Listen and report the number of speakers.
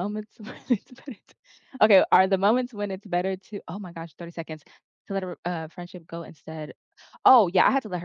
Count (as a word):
one